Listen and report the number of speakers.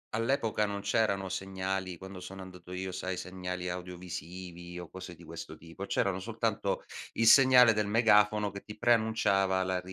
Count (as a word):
one